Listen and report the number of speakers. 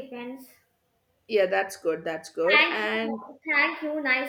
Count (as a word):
two